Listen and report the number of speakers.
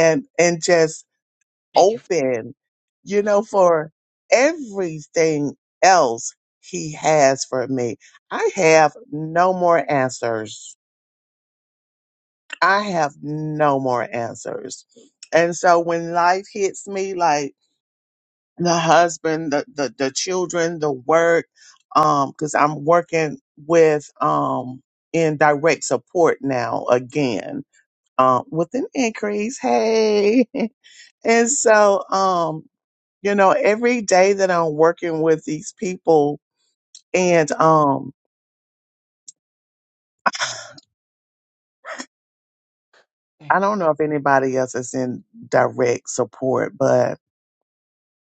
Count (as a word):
one